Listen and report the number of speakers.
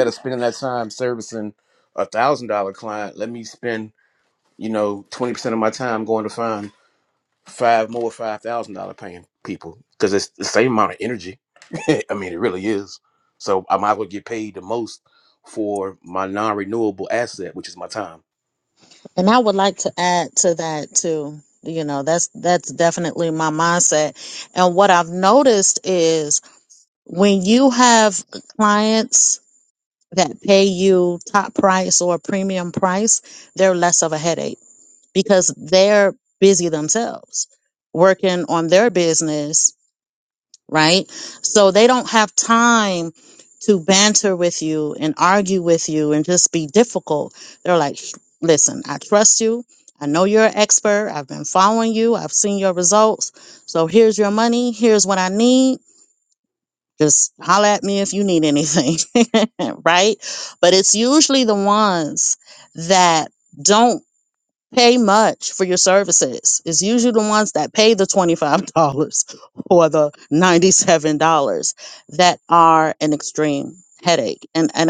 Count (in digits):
2